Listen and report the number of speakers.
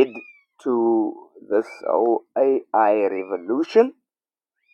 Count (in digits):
1